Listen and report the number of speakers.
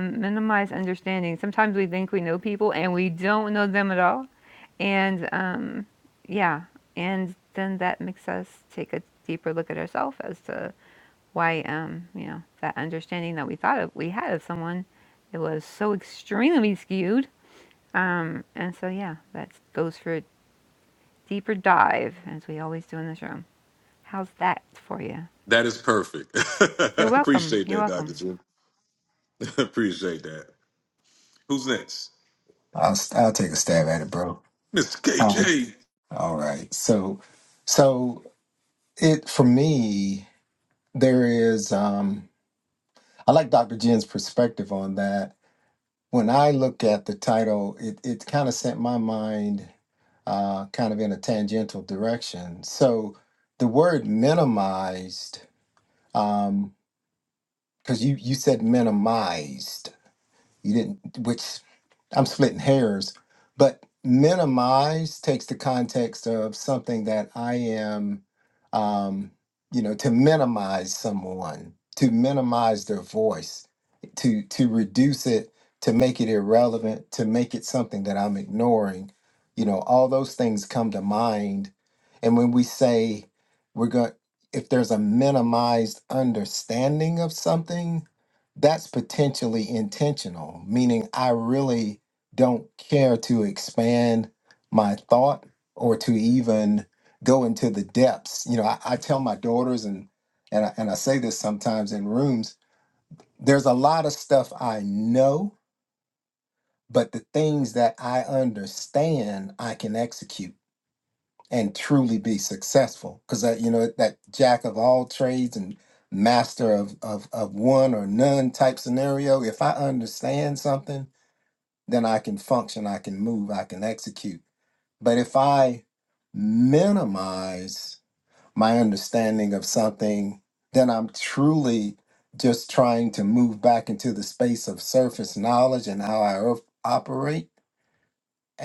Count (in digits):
3